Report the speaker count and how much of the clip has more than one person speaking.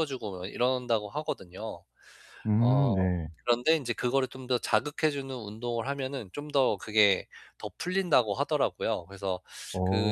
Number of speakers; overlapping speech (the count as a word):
two, about 6%